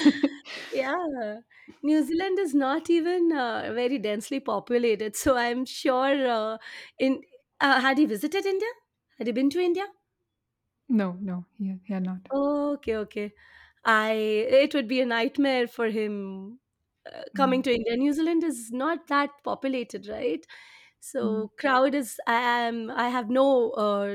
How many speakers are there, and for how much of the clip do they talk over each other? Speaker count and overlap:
two, about 2%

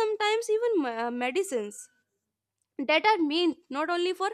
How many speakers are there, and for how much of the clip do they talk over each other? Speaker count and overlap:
one, no overlap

